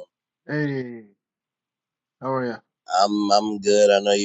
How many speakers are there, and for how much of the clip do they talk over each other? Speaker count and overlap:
2, no overlap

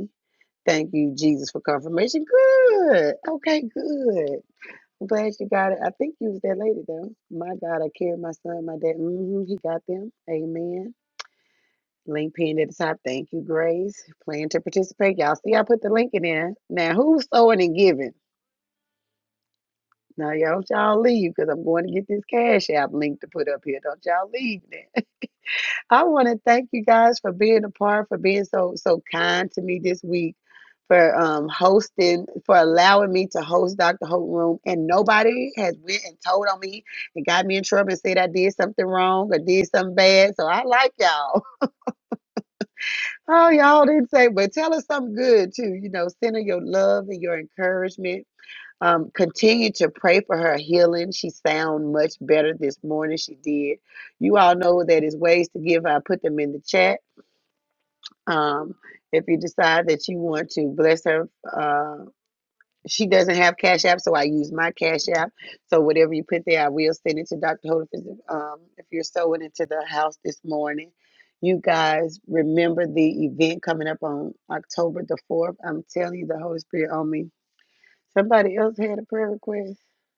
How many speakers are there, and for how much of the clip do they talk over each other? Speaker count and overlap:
1, no overlap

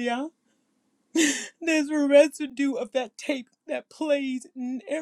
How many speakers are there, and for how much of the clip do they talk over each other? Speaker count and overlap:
1, no overlap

